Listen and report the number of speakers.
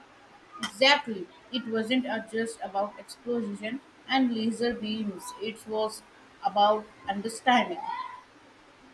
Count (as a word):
one